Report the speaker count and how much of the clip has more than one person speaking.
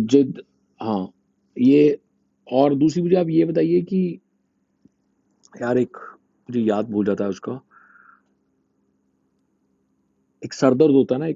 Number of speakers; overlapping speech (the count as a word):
one, no overlap